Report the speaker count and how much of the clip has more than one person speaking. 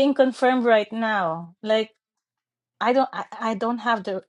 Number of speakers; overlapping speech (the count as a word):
one, no overlap